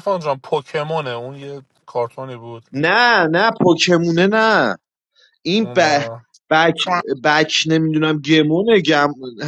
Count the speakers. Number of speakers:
2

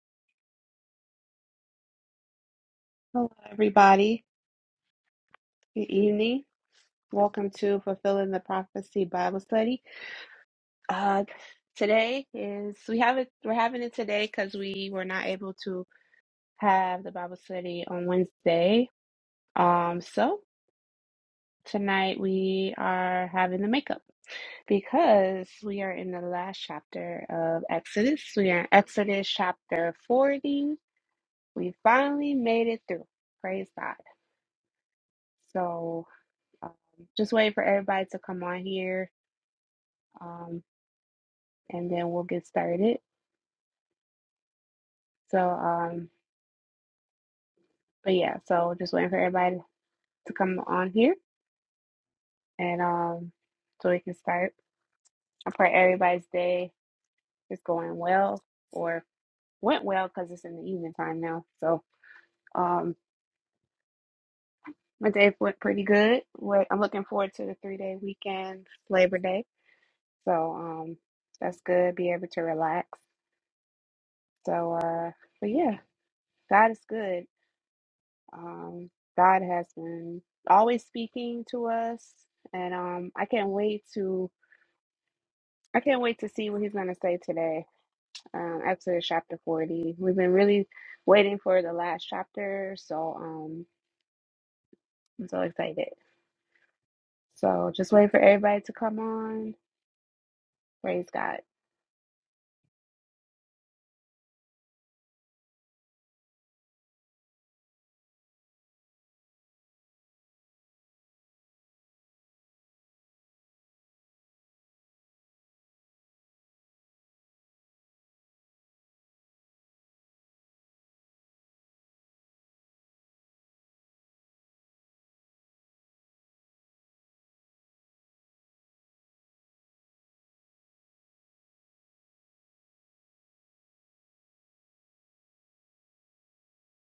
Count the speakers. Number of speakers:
1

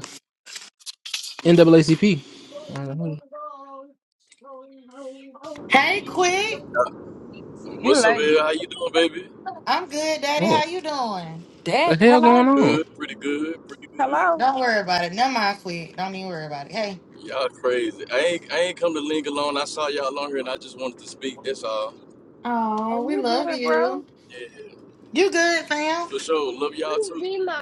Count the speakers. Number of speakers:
4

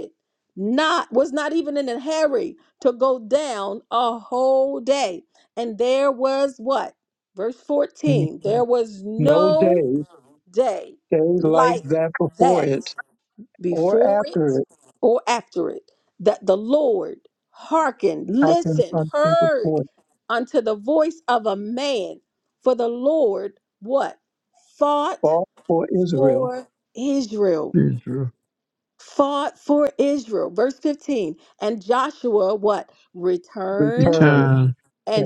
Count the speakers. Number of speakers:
3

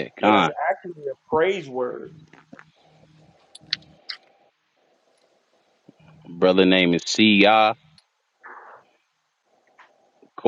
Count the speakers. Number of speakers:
2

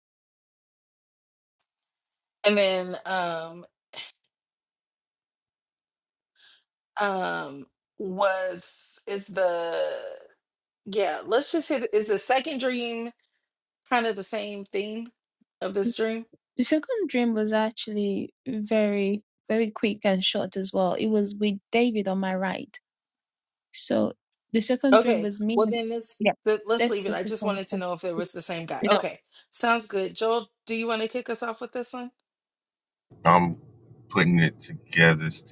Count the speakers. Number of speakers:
3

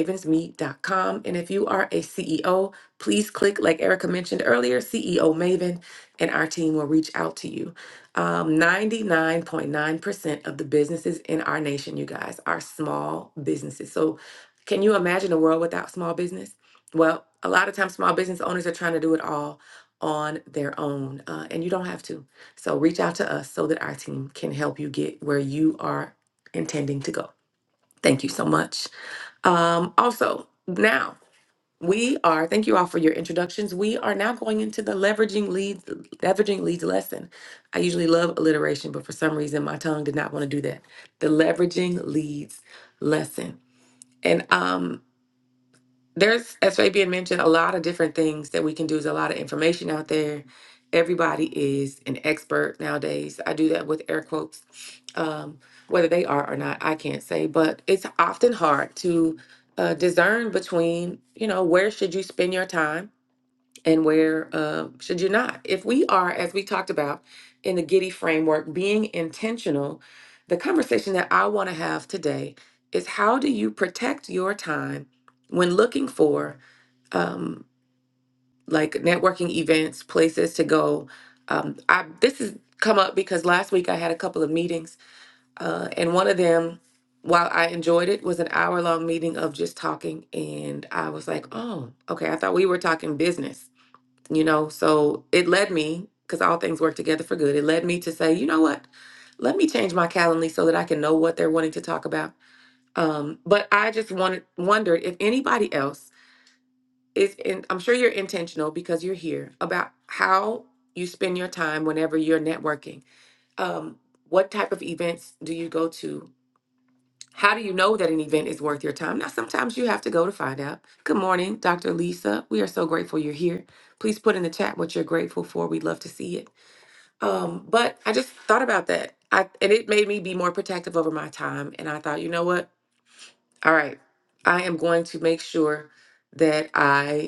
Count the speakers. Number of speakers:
1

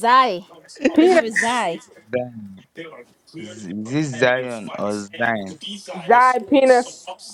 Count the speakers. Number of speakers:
3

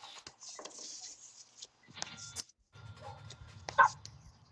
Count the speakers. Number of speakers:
0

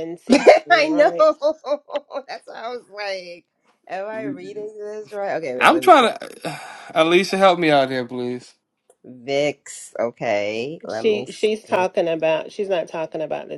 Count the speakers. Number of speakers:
3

